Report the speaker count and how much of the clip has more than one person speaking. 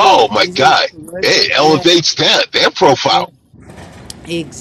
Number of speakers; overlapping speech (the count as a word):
two, about 37%